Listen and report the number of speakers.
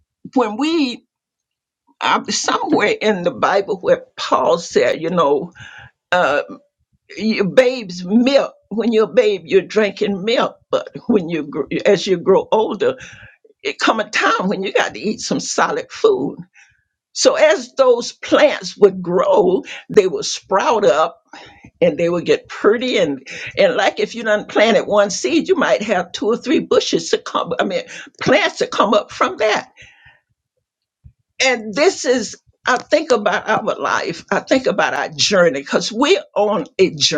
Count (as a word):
one